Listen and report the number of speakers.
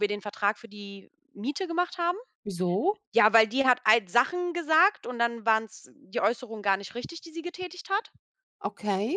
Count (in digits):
2